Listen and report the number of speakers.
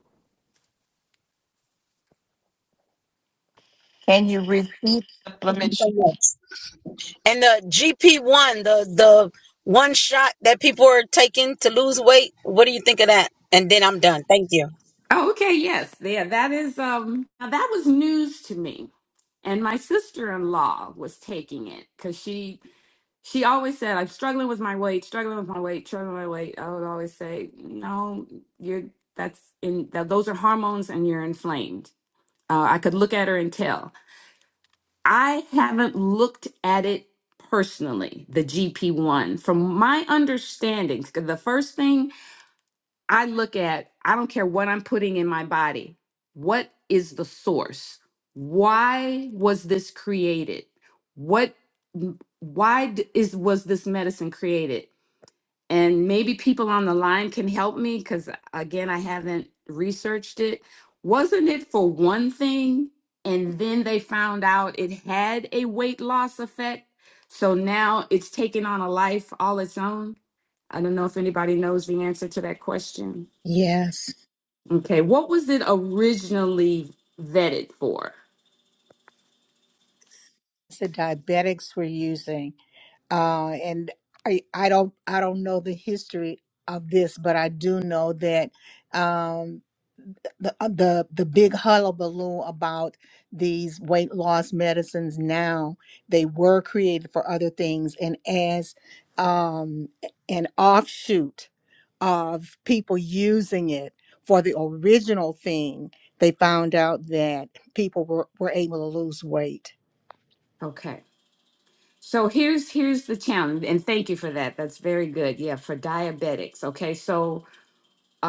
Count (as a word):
four